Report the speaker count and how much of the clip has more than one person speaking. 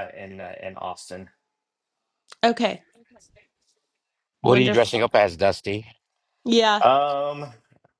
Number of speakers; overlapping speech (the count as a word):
three, about 7%